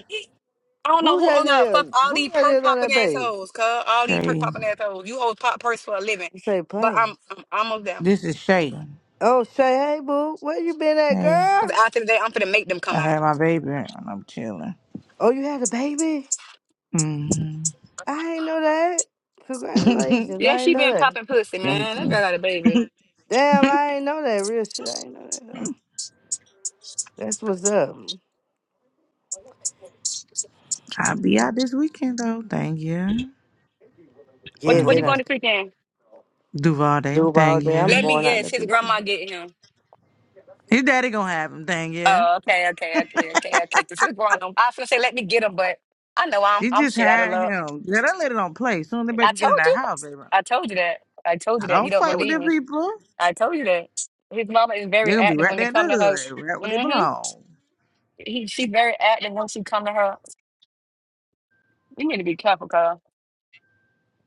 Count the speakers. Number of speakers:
3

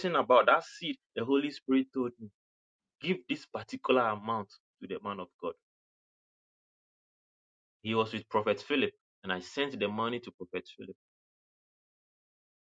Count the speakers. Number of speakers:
1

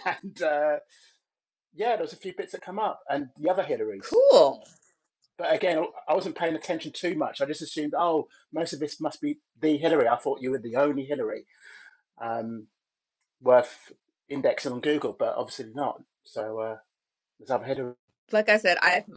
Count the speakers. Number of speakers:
2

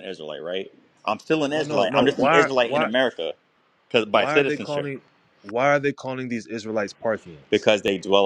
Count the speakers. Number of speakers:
2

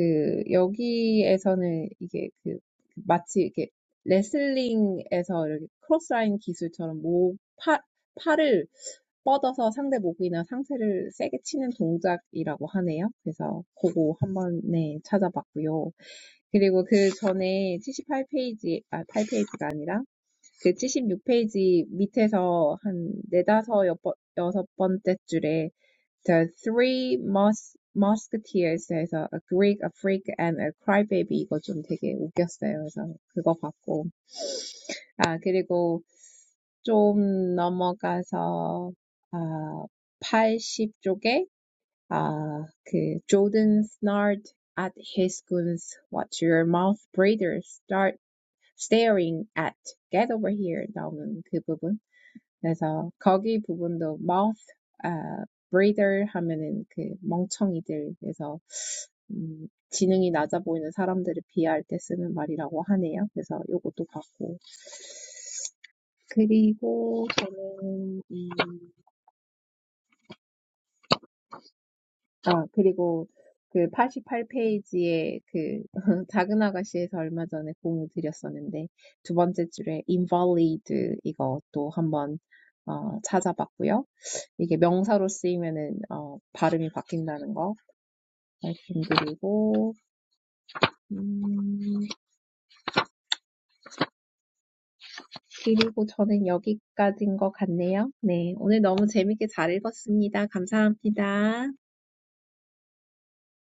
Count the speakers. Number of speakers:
1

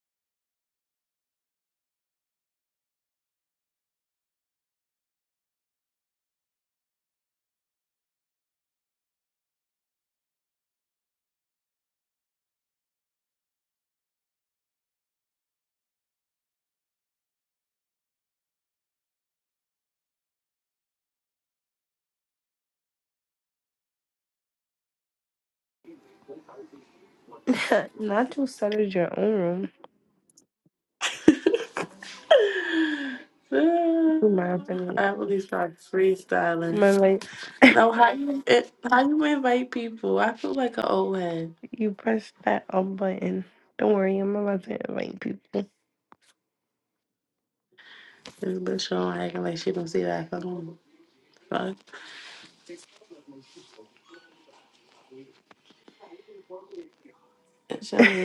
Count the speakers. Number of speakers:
2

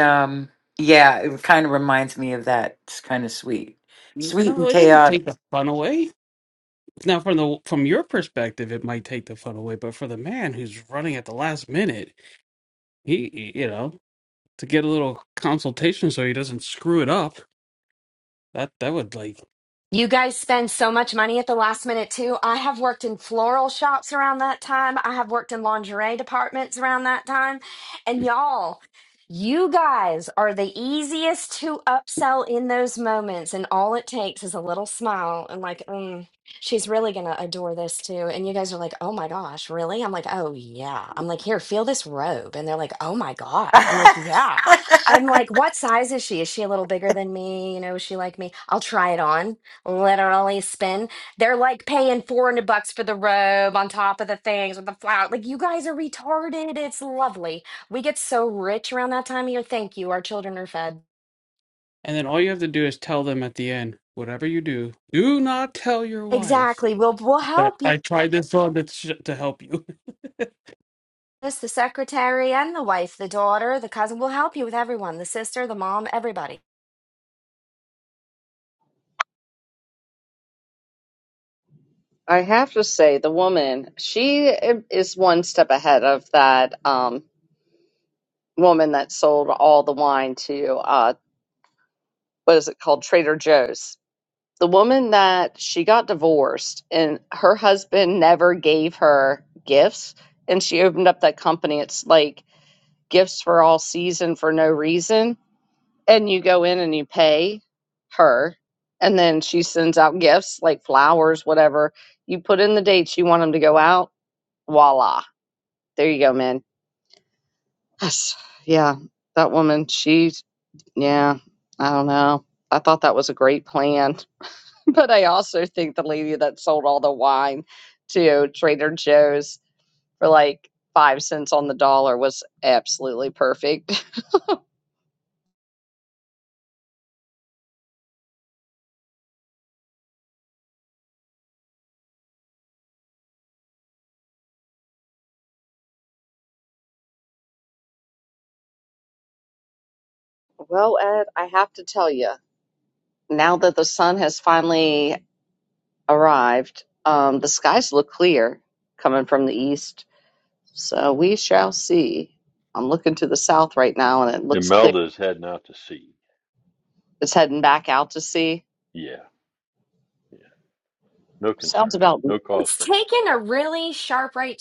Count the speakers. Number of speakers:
5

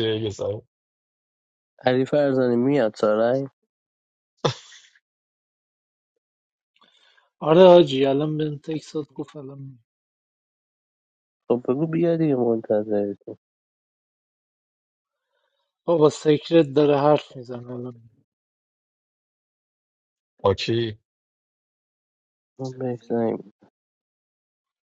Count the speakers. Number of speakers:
3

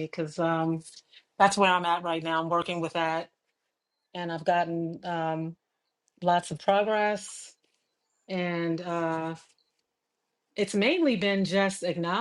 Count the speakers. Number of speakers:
1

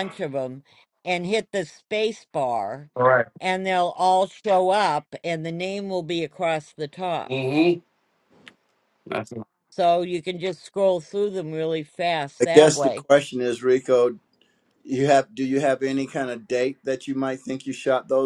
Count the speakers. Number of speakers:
3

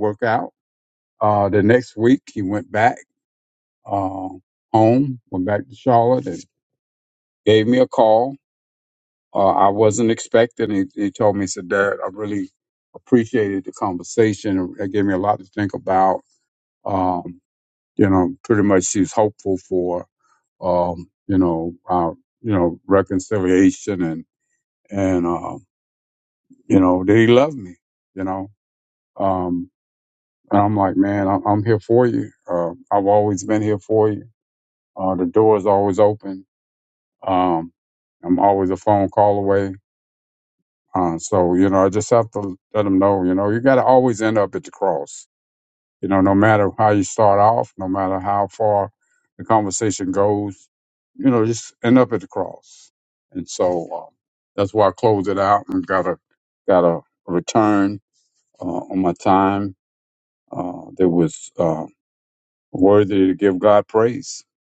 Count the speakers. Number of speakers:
1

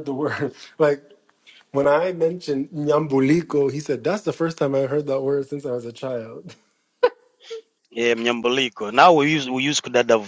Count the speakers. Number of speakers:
2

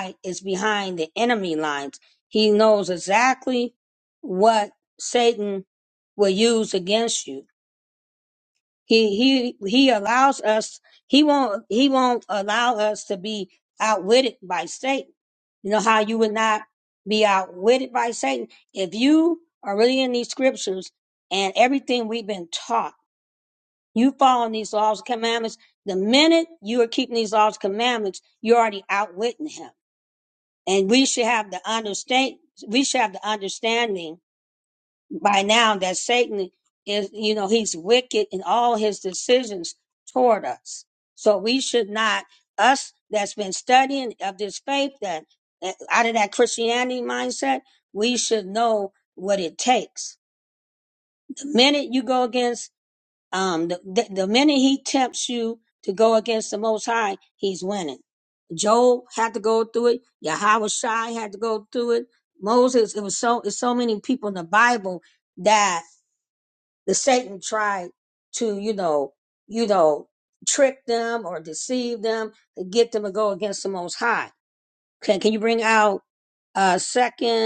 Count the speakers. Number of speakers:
1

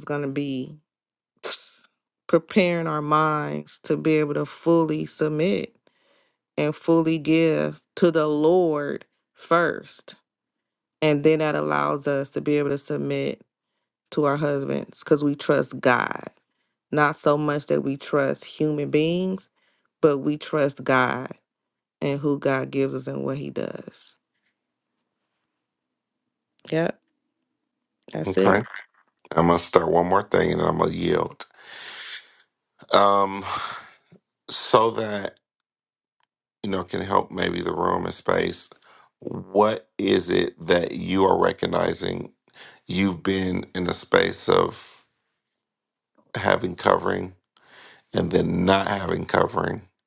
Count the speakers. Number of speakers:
2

